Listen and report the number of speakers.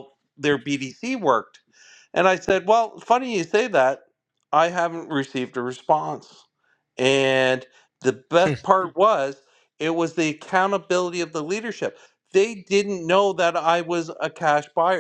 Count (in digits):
1